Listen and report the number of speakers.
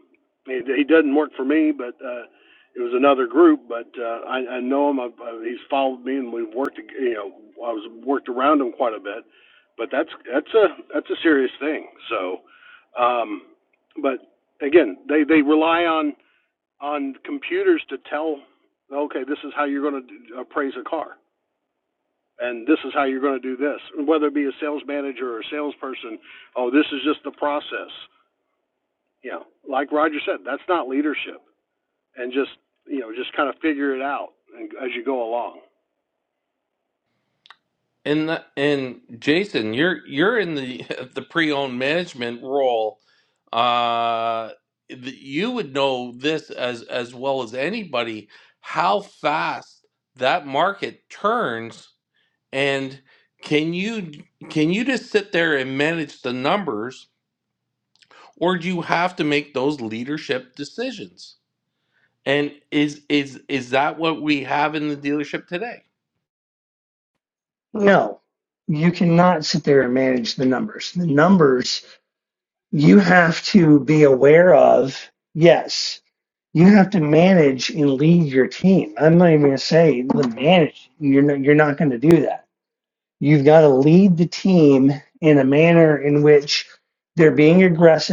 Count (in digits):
3